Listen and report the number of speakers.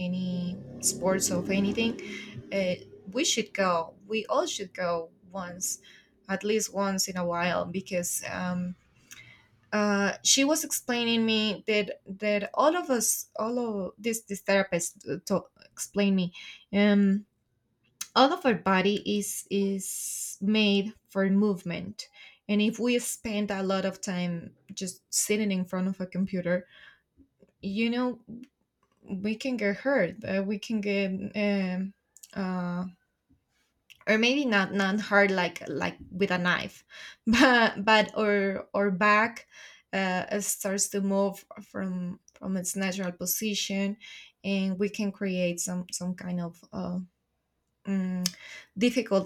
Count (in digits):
1